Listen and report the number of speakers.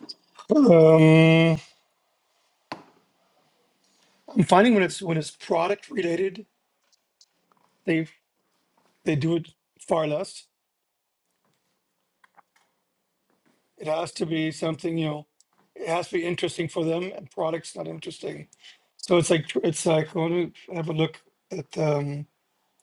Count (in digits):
1